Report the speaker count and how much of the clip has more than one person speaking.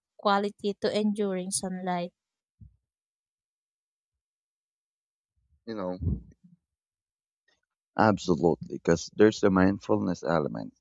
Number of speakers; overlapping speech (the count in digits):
2, no overlap